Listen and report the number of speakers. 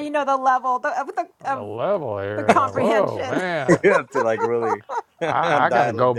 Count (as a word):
three